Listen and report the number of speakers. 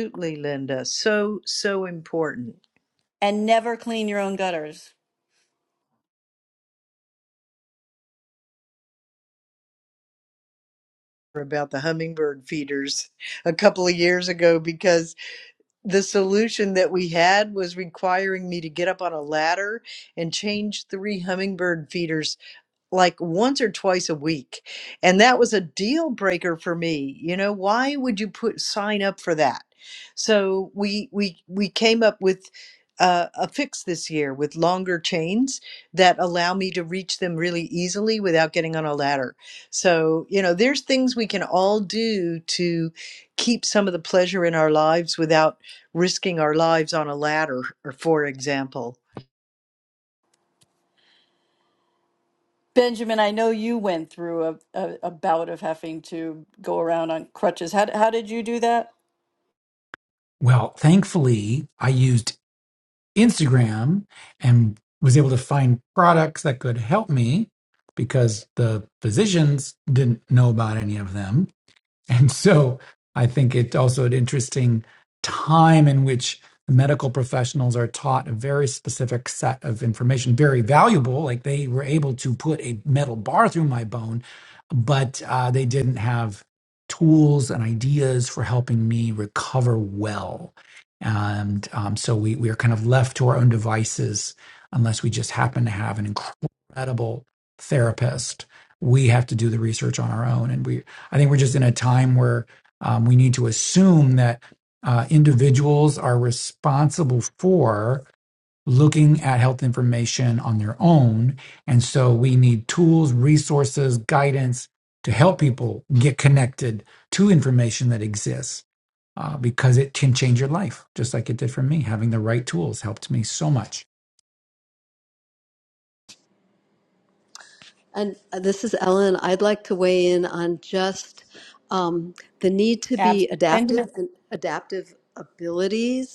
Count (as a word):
four